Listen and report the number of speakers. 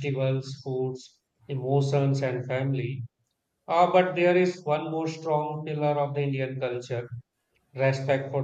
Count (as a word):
one